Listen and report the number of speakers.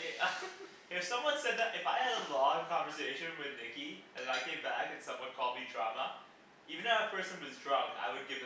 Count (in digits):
1